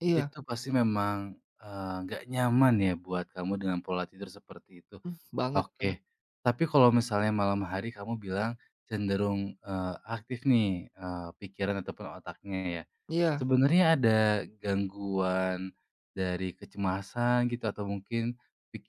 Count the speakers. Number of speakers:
two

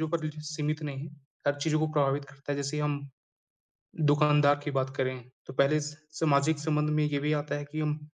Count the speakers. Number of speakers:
one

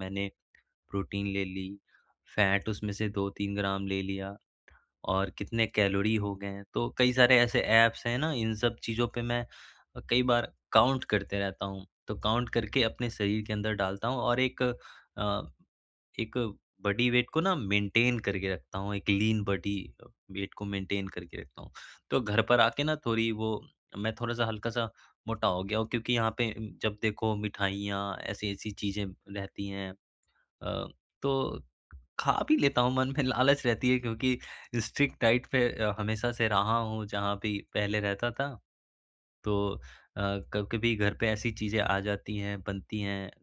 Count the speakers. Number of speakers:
one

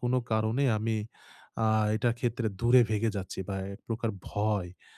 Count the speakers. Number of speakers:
one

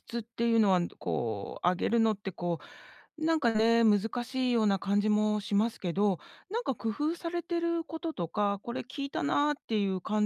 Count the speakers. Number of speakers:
one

